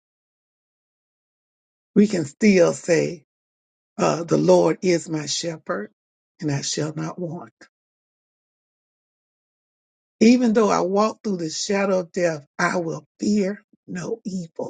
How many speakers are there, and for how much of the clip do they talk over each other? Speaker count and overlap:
1, no overlap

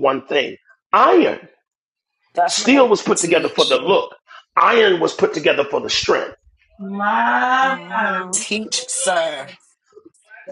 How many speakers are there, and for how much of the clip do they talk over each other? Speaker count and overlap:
3, about 12%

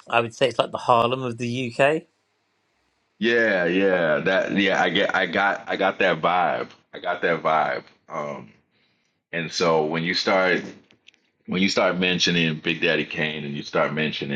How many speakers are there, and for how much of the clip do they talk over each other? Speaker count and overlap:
2, no overlap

